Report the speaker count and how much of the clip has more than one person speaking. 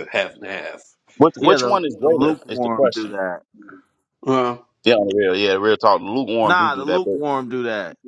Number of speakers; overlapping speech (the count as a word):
three, about 31%